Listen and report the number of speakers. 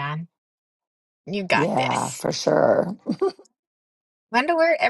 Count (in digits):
2